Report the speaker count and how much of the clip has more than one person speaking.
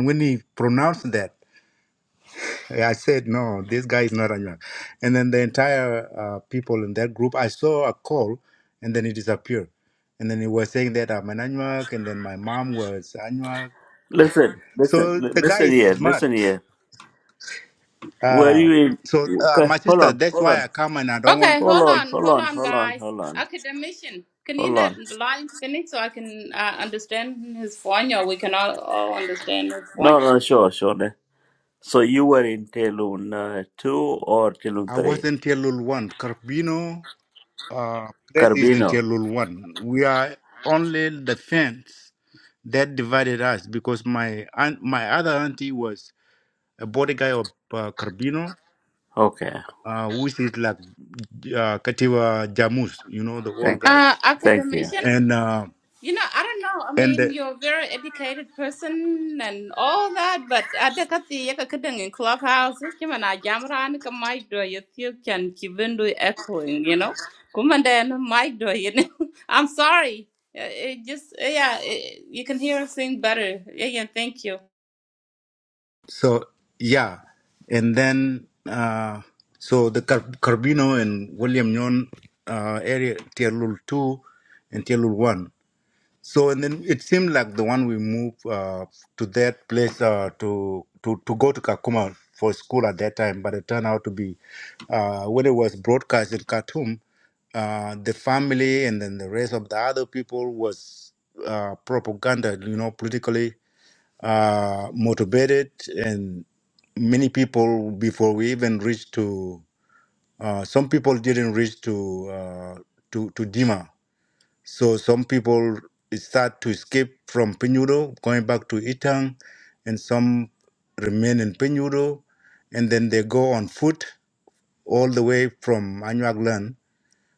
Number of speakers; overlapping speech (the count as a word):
three, about 6%